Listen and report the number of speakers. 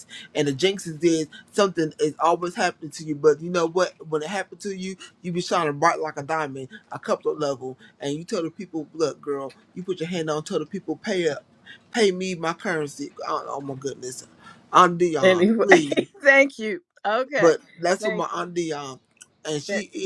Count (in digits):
2